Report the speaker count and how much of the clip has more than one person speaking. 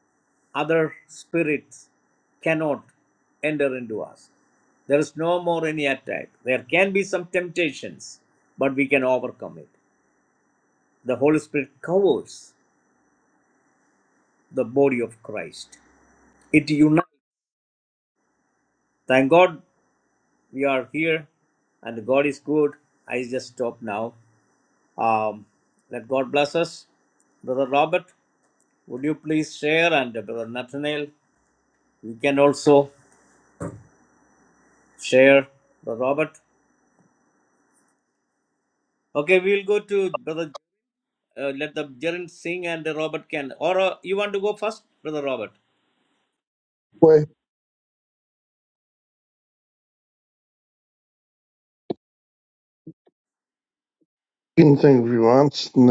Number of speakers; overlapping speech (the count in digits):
2, no overlap